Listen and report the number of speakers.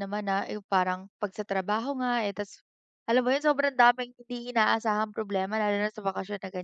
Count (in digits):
1